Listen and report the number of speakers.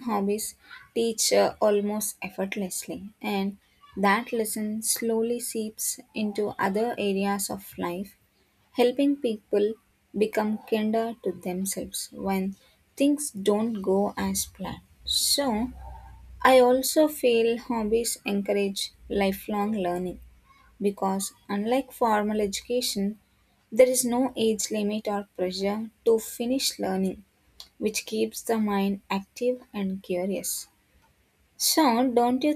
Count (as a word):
one